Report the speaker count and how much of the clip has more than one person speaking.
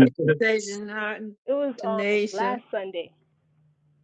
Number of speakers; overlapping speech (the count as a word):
two, about 20%